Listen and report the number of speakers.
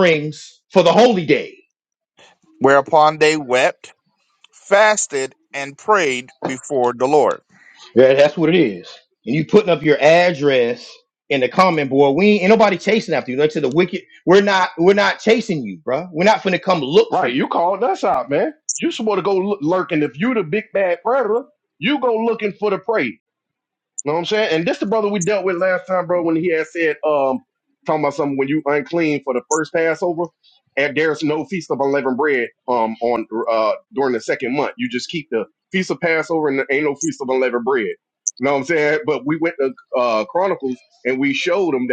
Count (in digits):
3